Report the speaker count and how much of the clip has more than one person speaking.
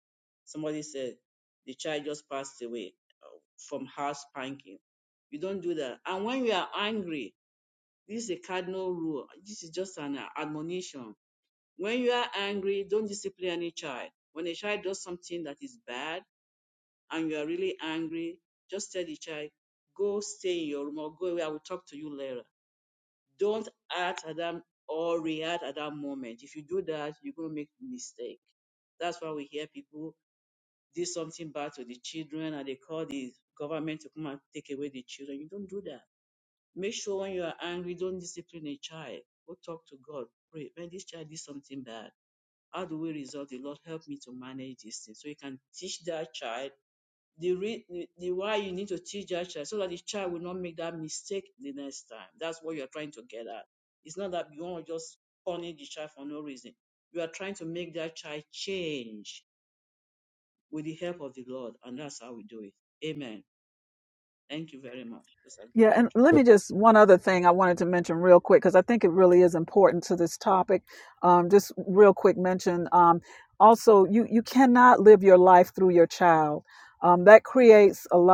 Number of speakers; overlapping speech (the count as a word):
two, under 1%